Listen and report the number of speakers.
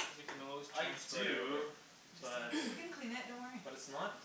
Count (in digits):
3